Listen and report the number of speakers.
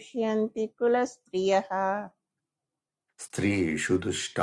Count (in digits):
2